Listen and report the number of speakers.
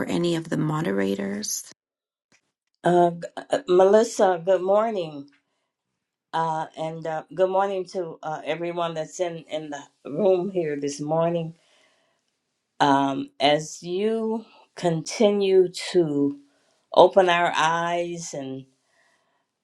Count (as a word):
two